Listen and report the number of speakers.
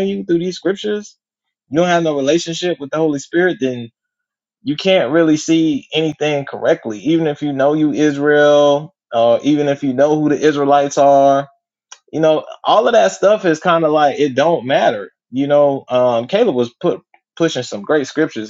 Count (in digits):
1